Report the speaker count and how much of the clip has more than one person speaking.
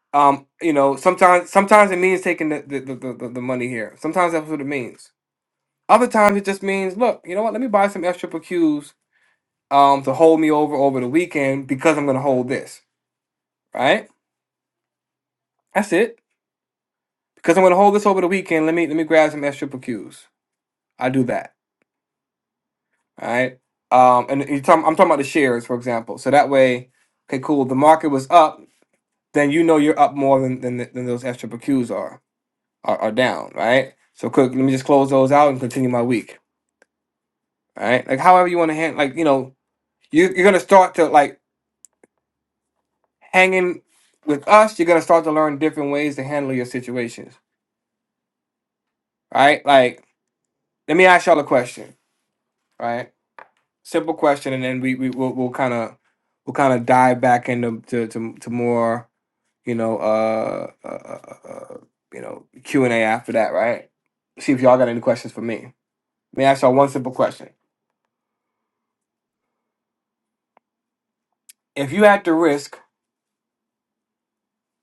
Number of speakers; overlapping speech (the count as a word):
one, no overlap